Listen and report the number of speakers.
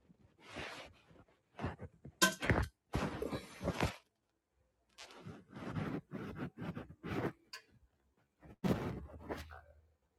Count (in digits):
0